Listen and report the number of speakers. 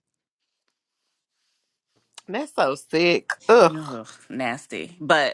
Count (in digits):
2